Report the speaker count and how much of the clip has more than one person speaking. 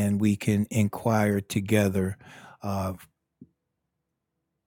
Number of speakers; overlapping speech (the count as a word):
one, no overlap